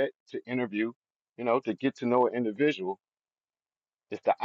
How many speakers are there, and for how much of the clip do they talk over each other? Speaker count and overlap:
1, no overlap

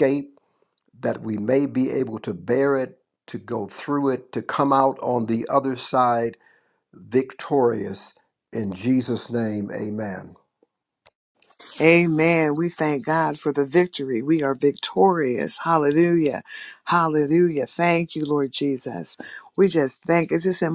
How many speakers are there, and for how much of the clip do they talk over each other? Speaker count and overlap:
2, no overlap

